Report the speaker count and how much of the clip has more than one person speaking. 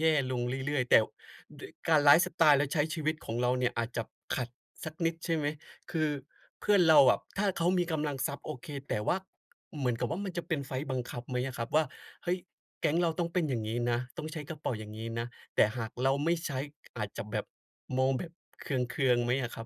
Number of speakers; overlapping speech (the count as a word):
one, no overlap